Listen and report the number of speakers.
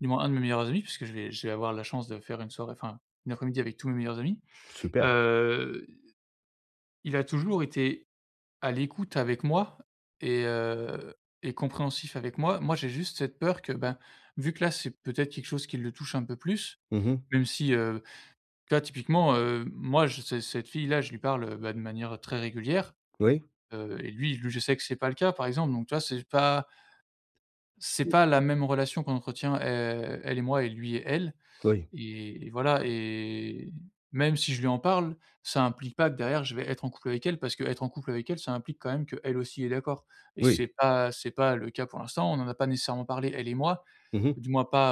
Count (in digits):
2